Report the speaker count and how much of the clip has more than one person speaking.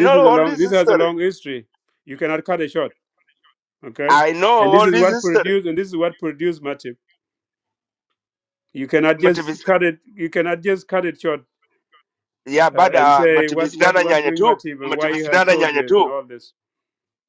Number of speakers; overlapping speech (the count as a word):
two, about 34%